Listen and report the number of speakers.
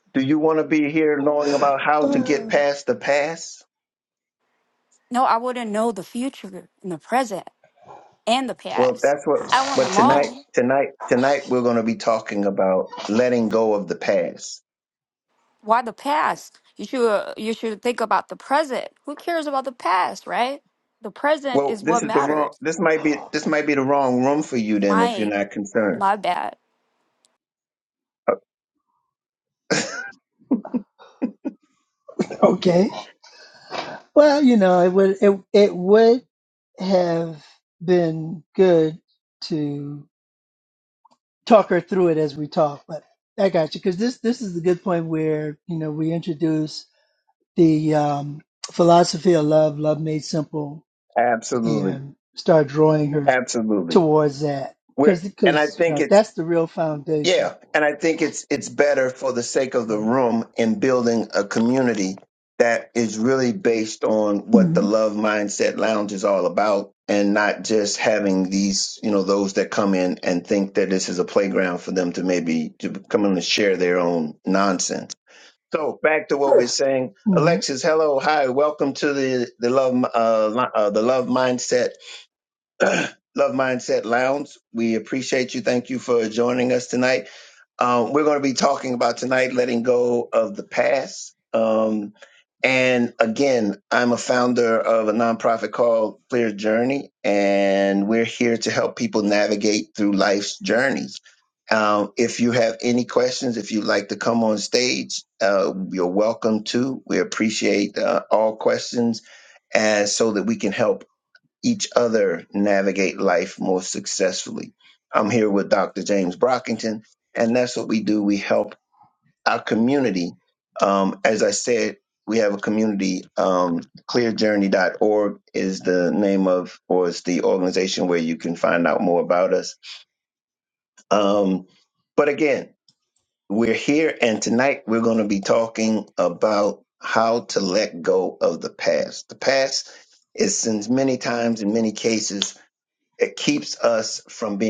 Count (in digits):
3